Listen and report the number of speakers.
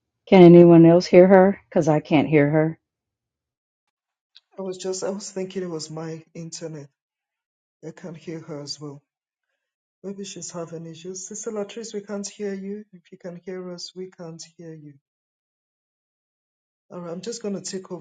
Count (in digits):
2